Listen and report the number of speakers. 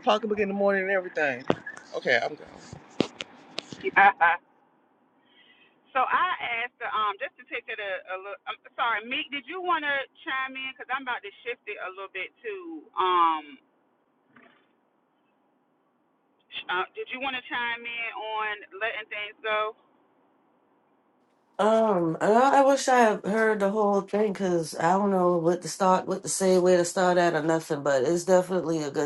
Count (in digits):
3